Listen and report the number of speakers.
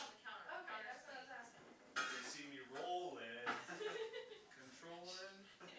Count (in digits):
3